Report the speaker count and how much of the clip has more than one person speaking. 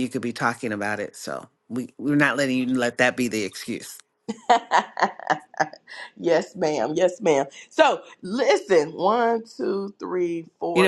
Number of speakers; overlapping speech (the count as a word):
two, about 1%